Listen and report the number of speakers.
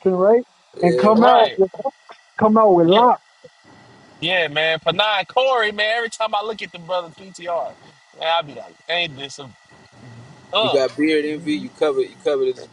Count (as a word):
three